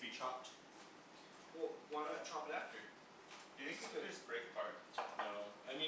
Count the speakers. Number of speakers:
2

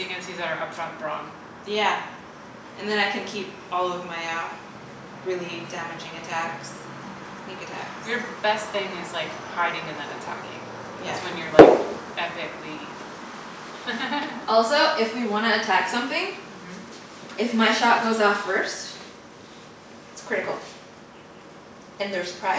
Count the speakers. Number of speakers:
2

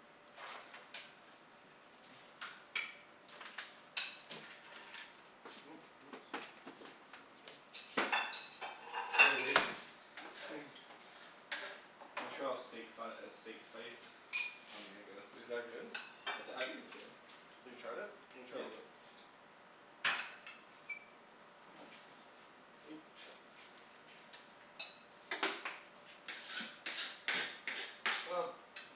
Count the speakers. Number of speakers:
2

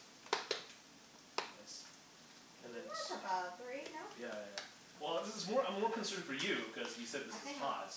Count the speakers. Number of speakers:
2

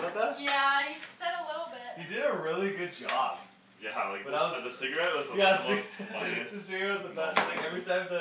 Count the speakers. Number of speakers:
3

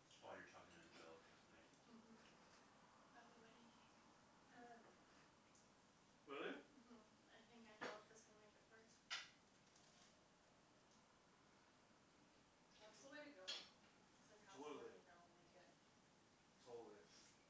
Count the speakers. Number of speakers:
4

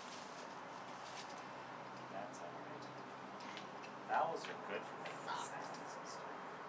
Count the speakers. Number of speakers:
1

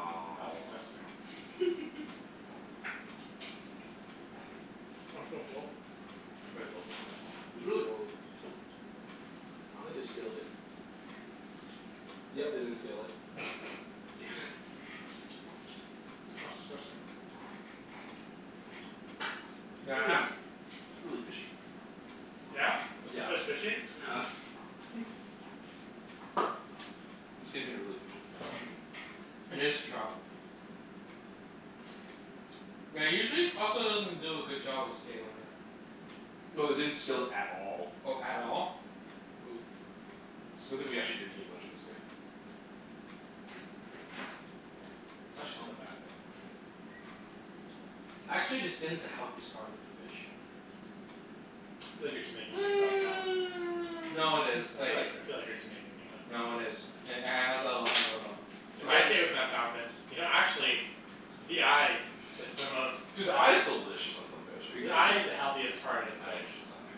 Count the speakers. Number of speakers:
4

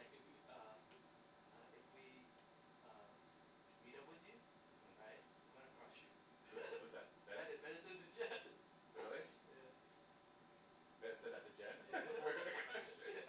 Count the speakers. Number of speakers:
2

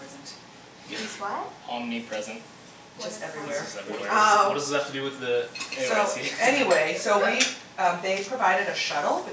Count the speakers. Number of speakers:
4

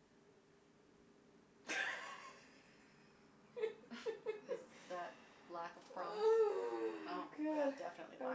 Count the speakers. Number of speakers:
2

